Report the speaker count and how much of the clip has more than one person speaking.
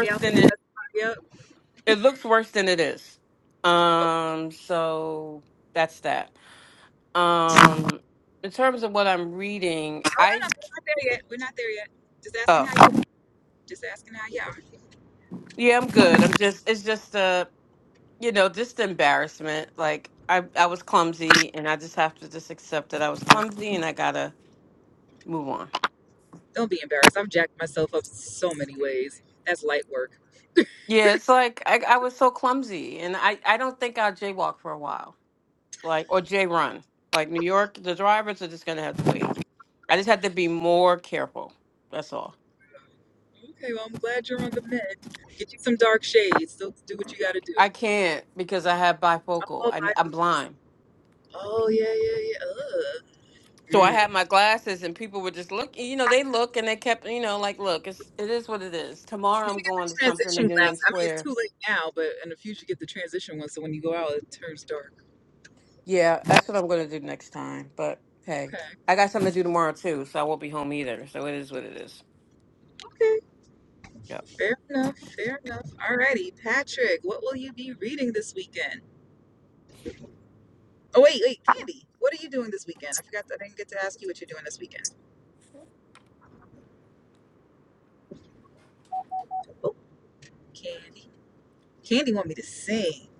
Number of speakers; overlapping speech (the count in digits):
2, about 4%